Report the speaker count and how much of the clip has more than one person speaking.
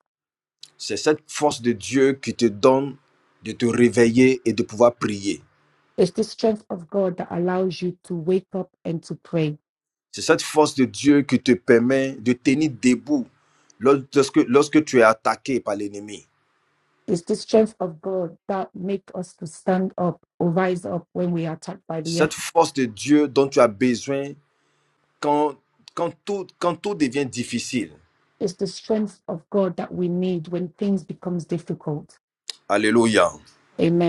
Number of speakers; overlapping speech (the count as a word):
two, about 1%